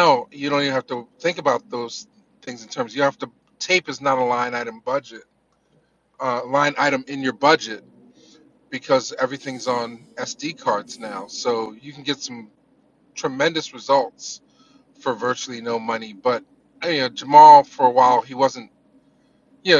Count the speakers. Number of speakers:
one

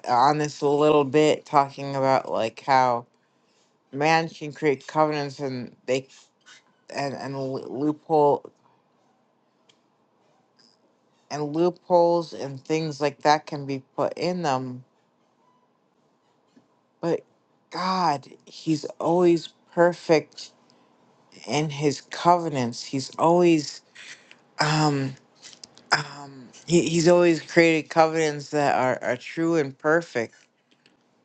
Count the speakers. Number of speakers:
one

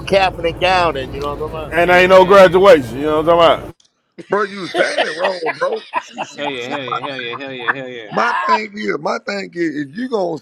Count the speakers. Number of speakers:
four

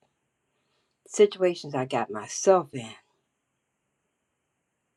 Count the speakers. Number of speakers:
one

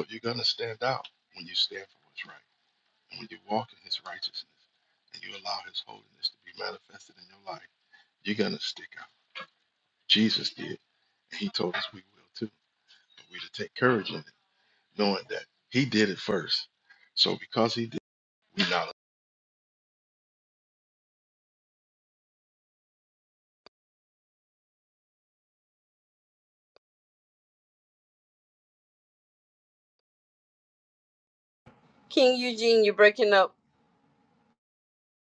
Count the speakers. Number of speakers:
two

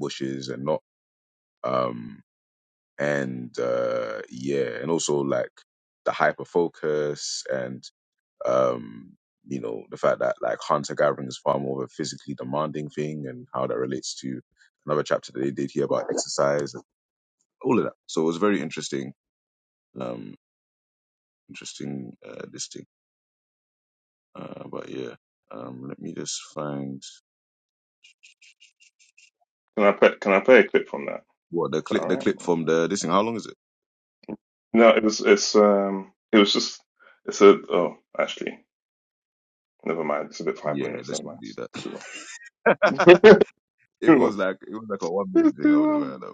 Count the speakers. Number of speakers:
two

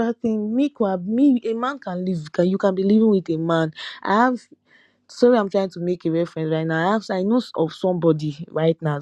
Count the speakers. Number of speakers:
one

